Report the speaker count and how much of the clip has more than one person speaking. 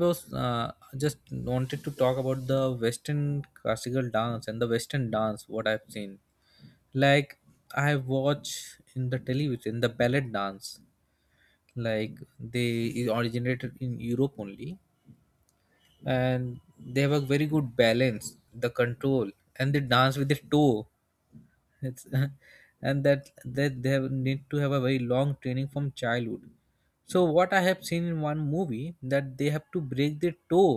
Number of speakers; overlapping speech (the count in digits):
1, no overlap